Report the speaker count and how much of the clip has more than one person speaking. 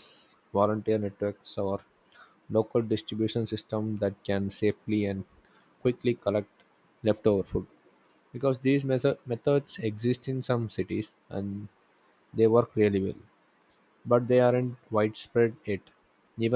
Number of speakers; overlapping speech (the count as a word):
one, no overlap